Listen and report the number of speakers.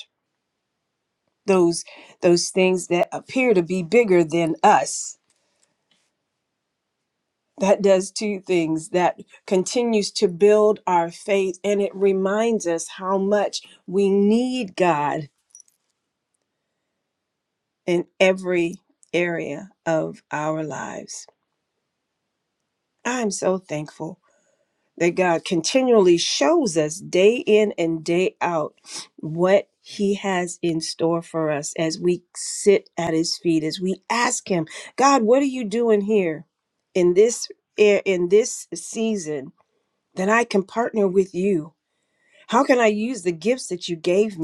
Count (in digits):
1